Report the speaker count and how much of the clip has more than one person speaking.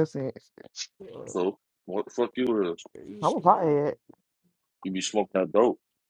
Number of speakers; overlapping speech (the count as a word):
three, about 10%